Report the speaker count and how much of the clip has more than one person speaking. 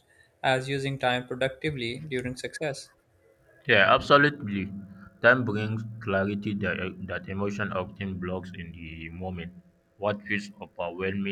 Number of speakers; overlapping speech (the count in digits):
2, no overlap